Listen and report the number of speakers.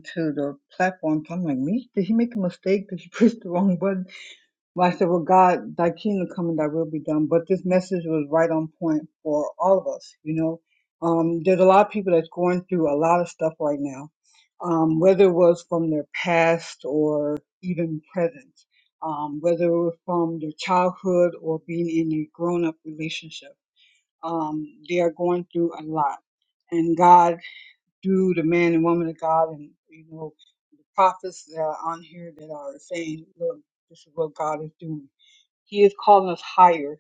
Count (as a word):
one